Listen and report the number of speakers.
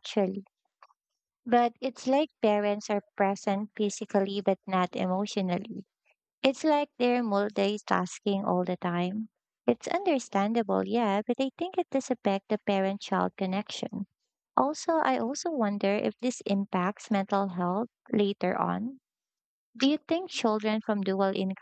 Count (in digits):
1